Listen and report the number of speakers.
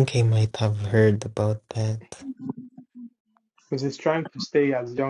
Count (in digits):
2